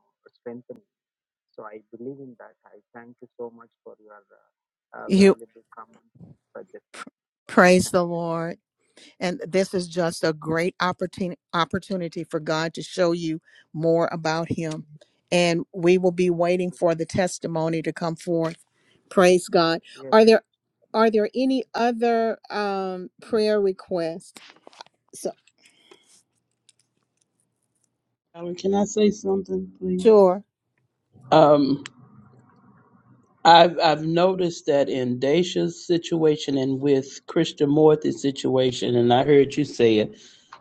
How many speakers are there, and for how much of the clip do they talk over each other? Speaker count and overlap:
three, about 1%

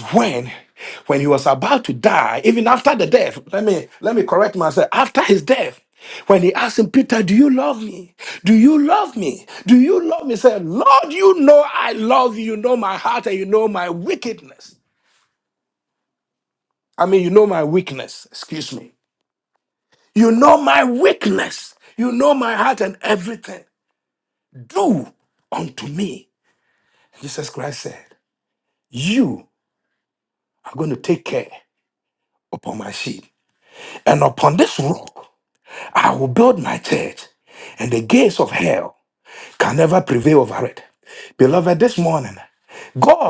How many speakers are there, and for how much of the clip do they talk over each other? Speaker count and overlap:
one, no overlap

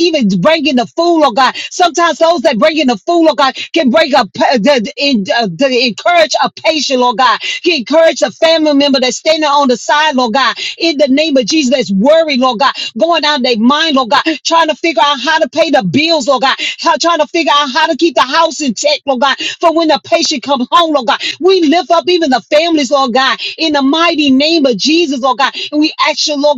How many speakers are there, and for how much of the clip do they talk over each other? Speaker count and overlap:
one, no overlap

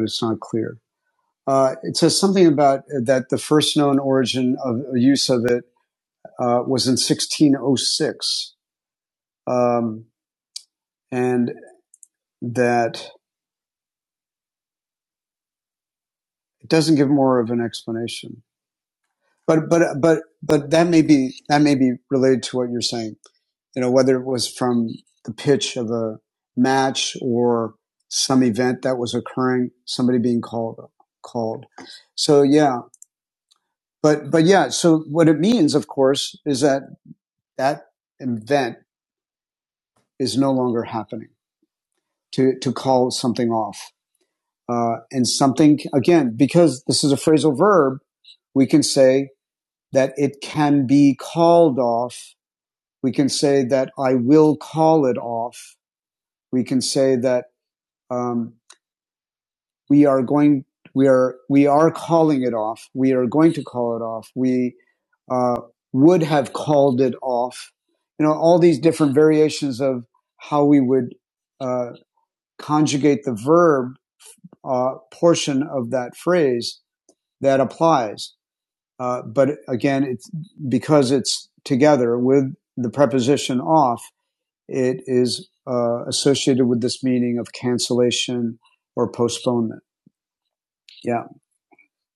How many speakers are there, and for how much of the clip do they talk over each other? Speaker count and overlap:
one, no overlap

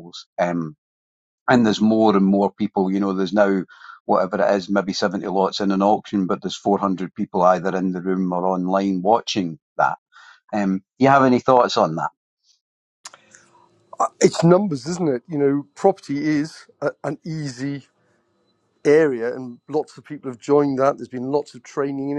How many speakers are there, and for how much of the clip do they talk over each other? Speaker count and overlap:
two, no overlap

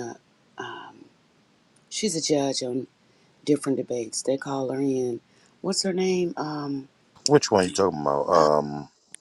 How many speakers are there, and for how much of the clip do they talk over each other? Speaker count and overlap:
two, about 2%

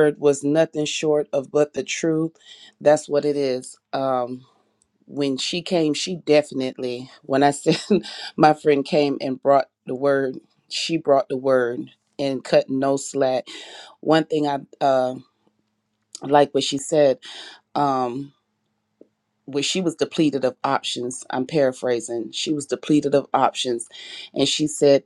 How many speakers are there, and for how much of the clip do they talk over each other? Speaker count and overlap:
one, no overlap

